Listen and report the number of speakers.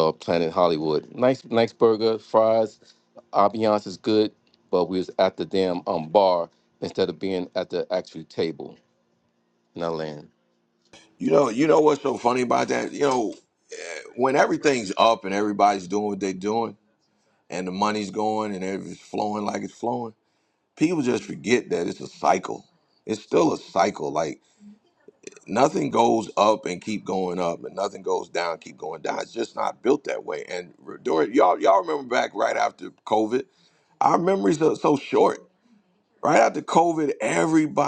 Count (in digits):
2